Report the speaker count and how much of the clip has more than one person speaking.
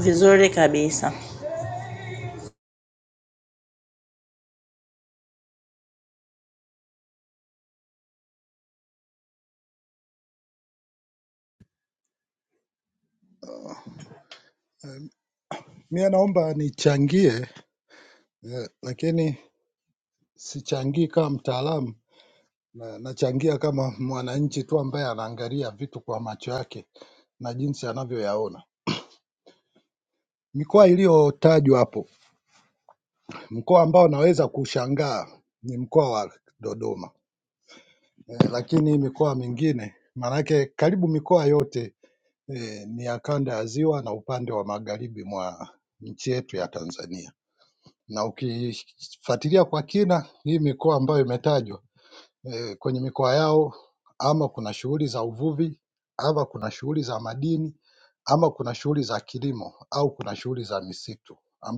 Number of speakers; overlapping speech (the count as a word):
two, no overlap